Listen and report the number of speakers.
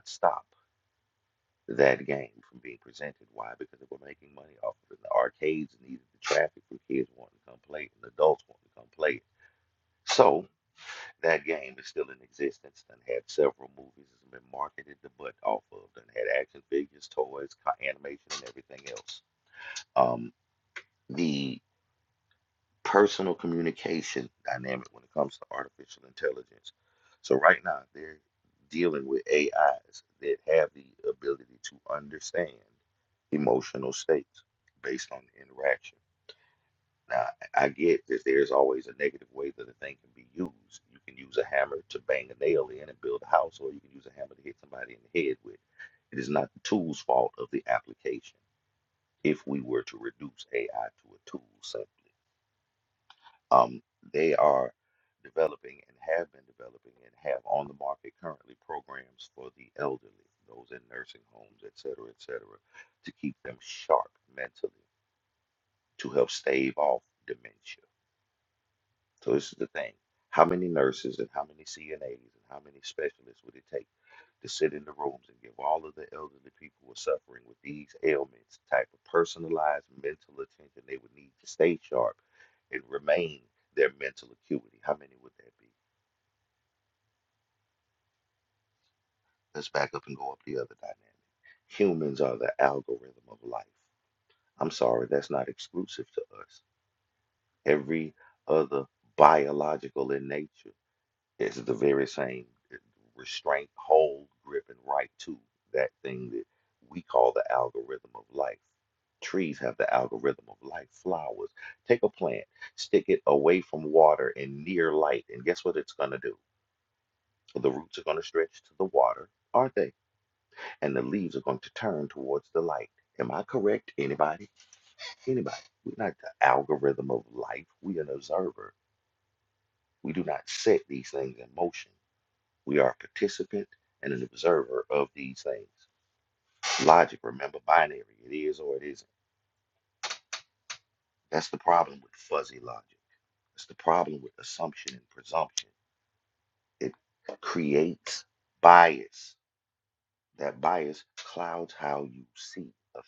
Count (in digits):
1